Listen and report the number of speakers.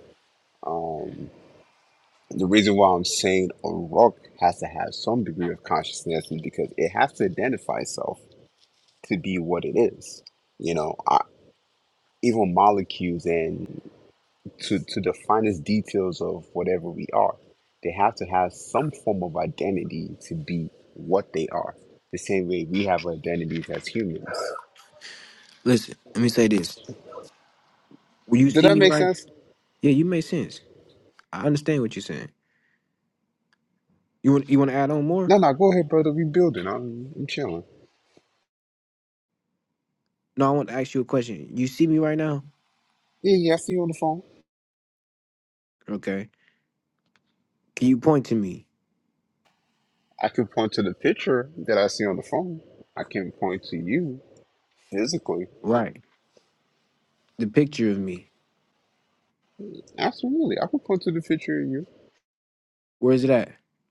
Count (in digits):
2